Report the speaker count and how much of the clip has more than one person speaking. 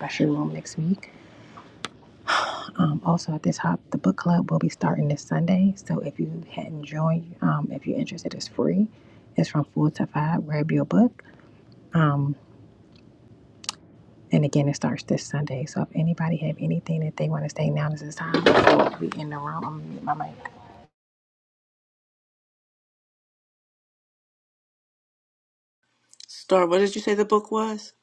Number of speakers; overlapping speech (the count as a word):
two, no overlap